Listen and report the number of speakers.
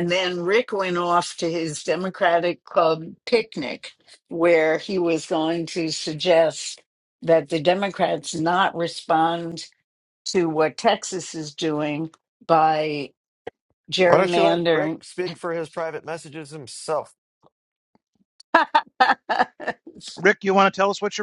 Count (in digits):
3